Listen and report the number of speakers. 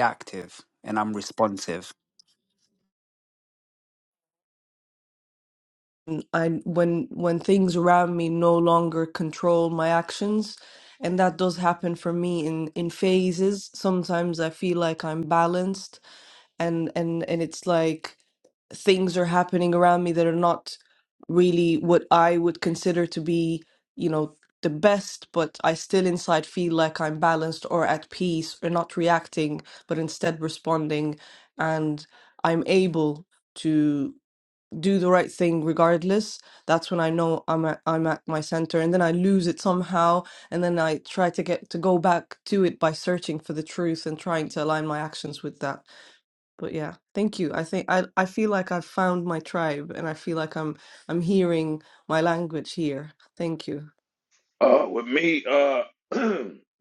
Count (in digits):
3